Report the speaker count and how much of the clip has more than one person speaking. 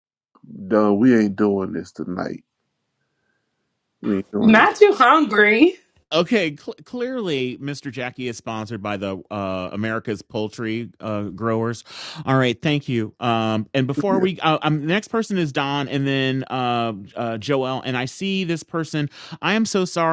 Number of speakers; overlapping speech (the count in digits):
3, about 2%